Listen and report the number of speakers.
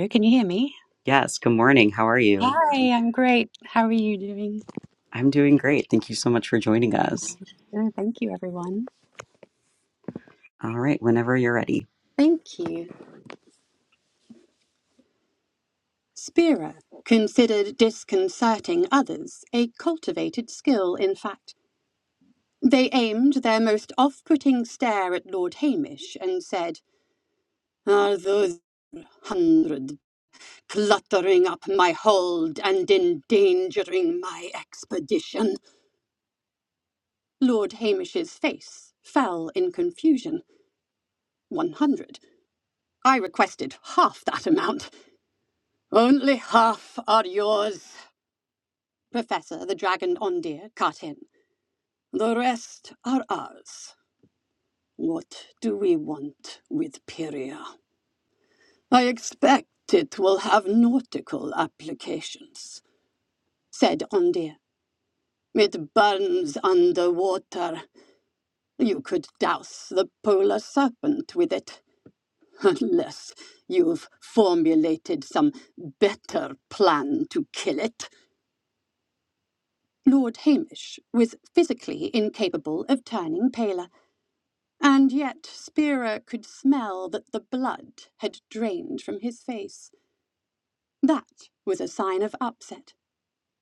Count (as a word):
two